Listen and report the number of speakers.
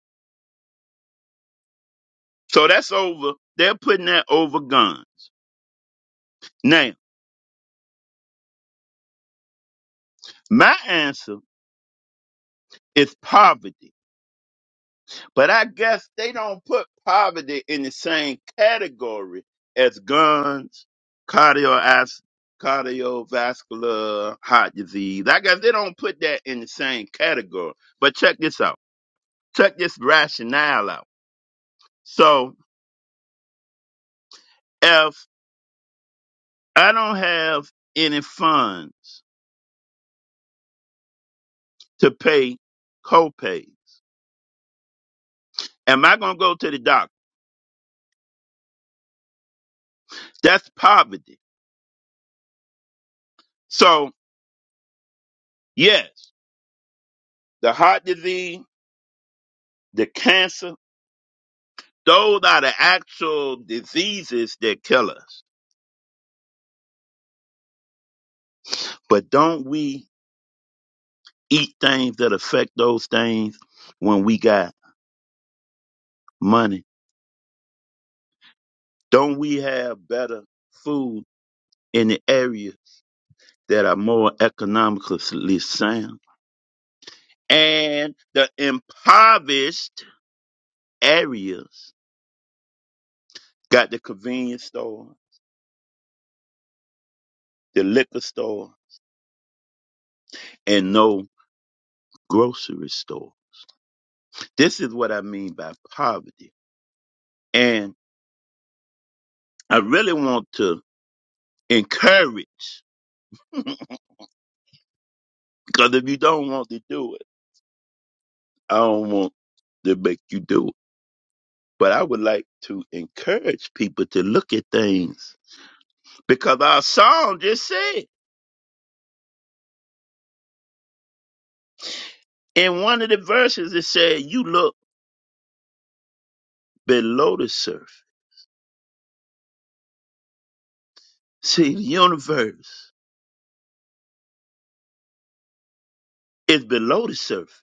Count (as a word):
one